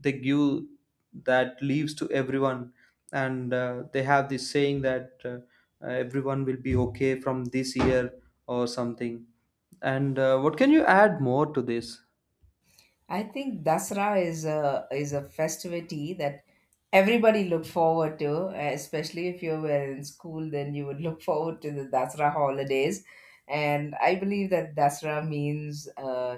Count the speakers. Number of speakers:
2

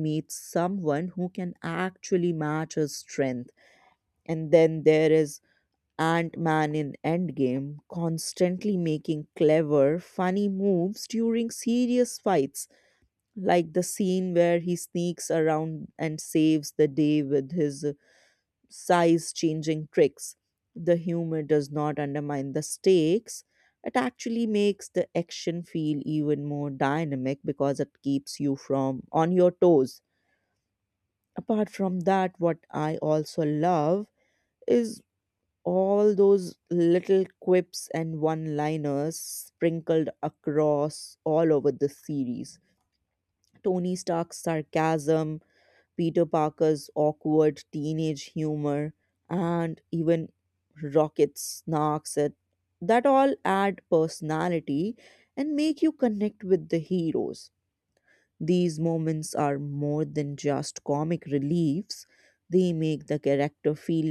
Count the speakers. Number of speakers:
1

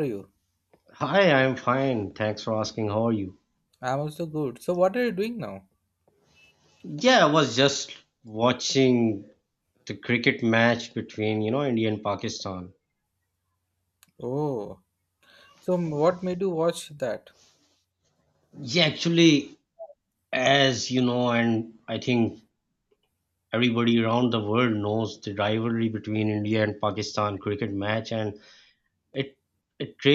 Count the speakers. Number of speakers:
2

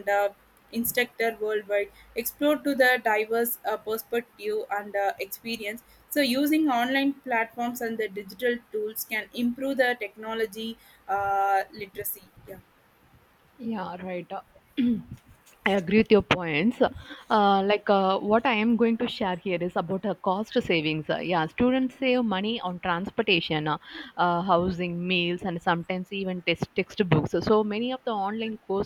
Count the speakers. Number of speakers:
2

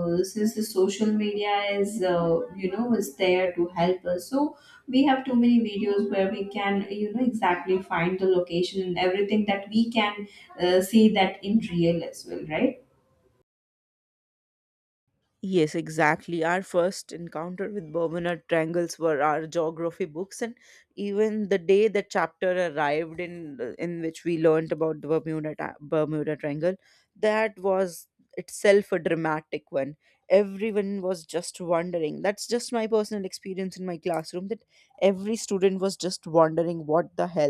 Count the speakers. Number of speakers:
2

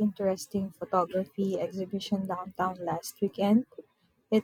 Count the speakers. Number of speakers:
1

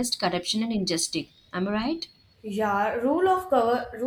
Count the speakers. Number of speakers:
2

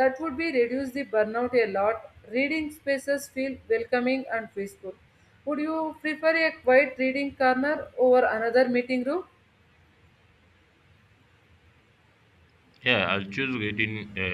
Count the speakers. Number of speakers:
2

